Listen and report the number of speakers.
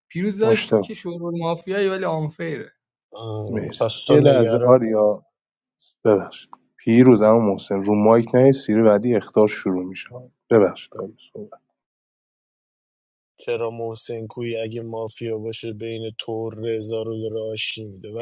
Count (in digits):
3